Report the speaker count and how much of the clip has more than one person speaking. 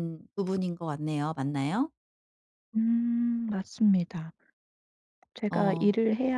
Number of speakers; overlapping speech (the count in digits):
2, about 7%